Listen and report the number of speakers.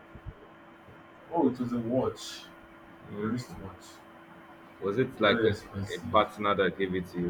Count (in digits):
2